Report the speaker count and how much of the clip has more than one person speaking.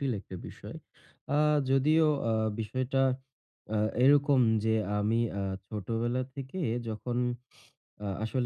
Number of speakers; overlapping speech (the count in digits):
1, no overlap